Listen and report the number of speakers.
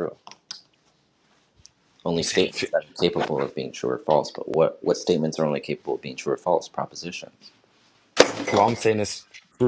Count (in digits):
2